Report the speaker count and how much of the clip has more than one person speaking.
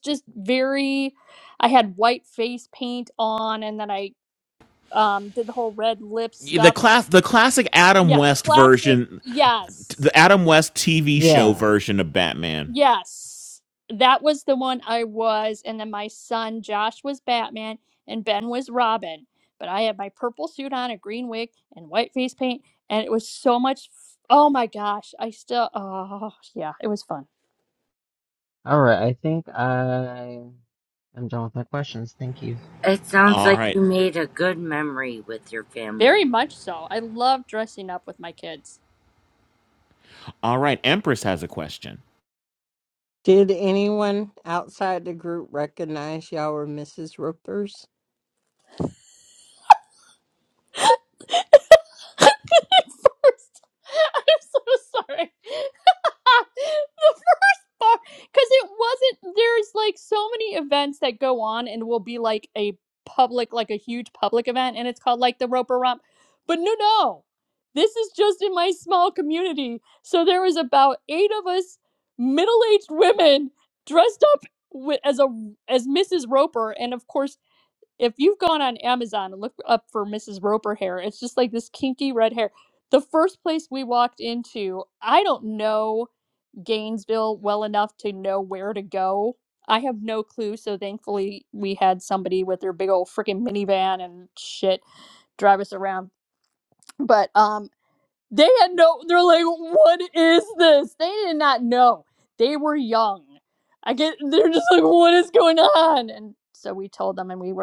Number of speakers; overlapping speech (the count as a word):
five, about 2%